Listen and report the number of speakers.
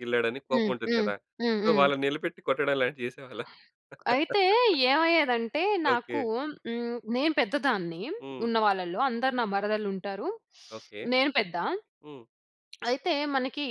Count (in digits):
2